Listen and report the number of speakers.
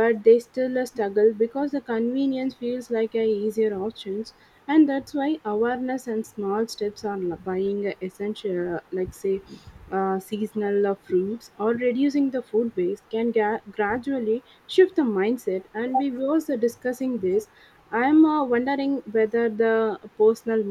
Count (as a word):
one